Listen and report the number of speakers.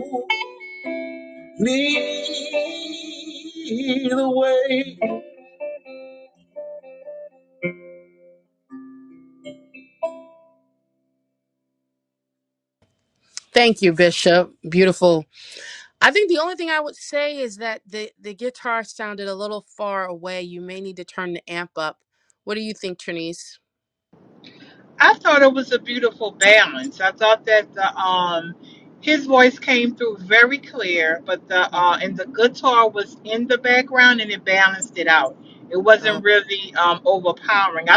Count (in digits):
3